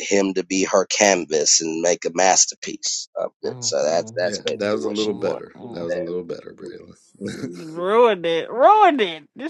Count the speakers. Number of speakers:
three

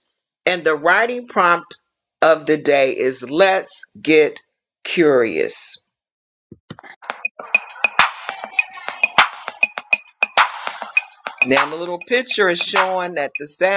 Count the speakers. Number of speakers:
one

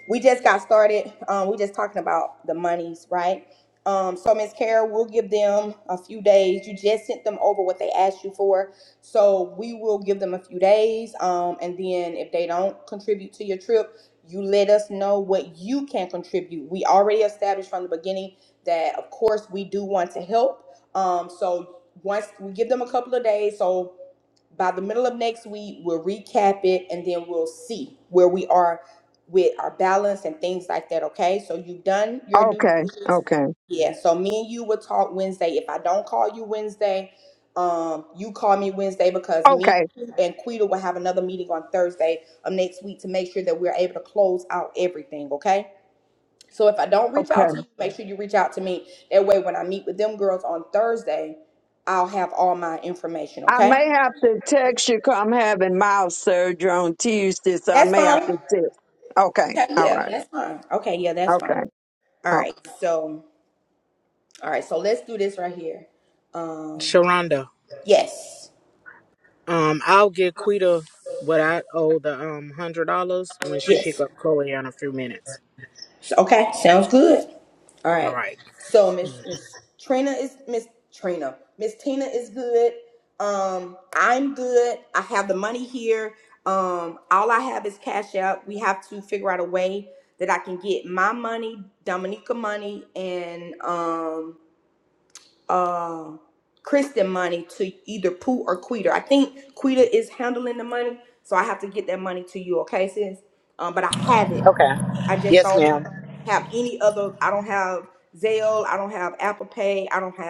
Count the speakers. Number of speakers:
four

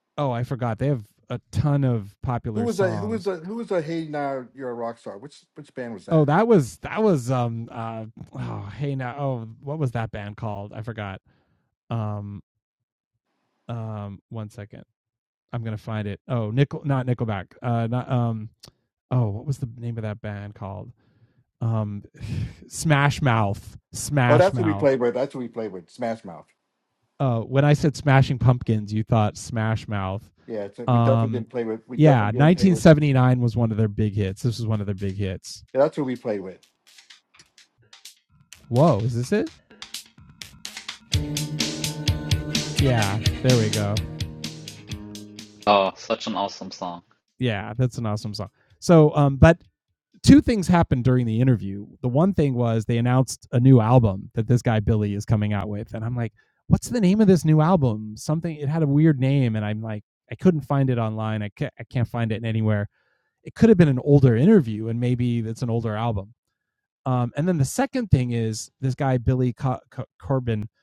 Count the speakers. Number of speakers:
three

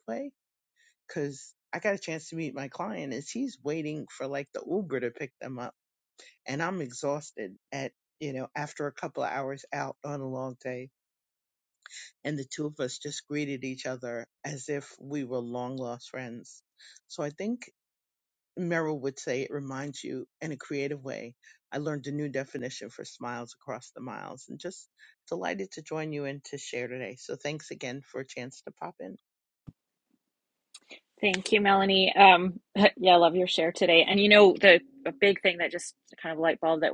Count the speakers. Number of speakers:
two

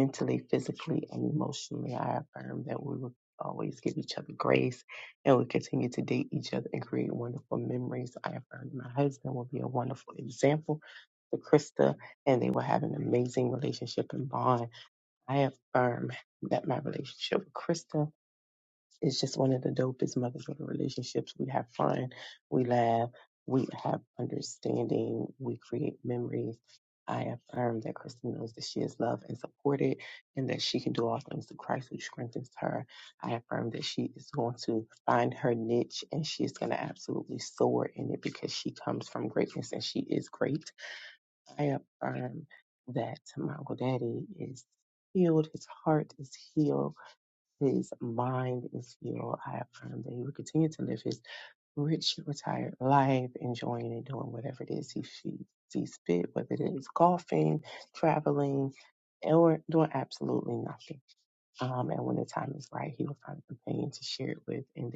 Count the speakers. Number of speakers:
one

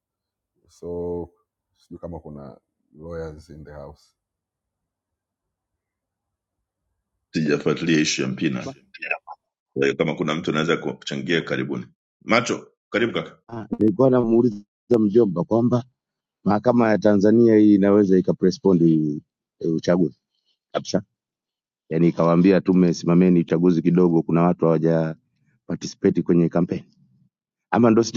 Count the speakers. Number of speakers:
three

